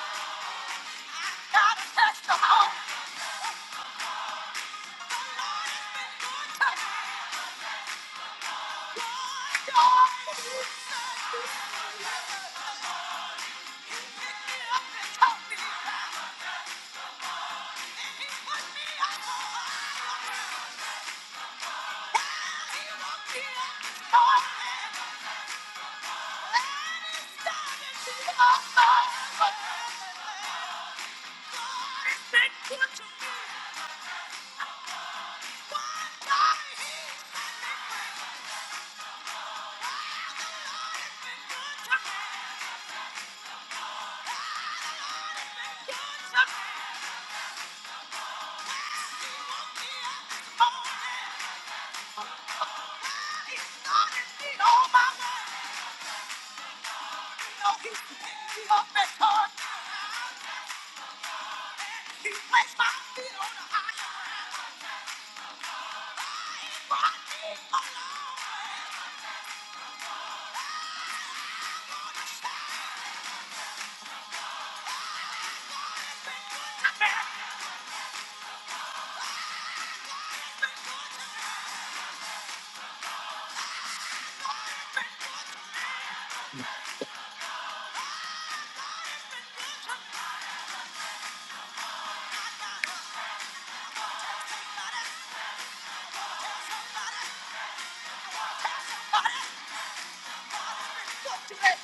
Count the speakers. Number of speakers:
1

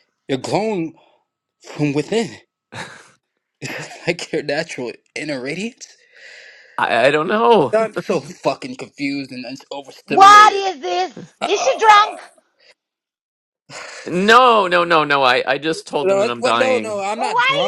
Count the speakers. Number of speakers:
3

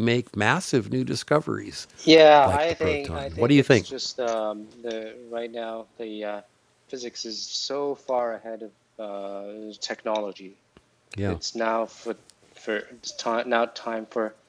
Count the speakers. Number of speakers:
2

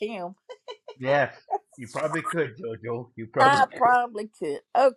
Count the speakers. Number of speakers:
2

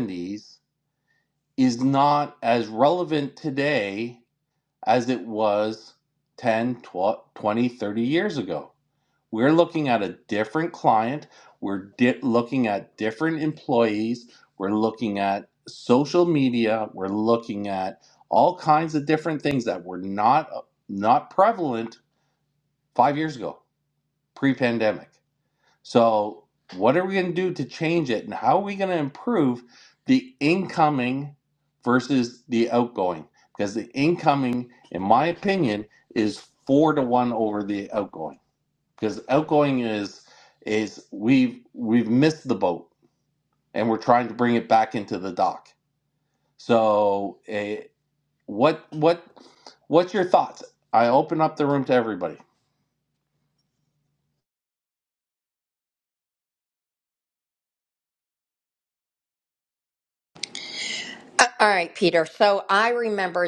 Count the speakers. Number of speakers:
2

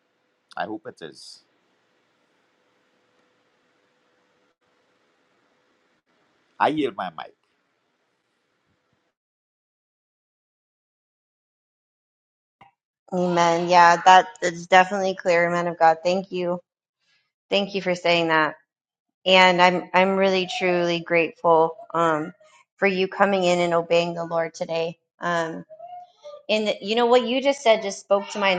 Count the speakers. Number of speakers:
2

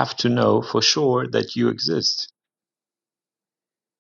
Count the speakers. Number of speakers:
1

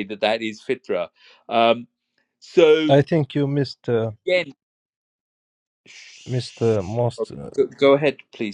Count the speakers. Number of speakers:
2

